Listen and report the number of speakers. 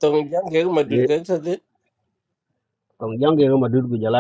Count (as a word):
two